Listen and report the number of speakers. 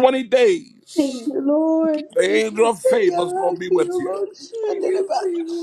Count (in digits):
3